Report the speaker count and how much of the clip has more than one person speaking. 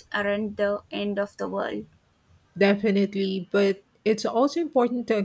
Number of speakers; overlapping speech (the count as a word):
two, no overlap